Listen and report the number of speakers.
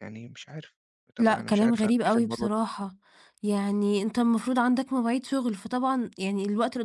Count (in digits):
2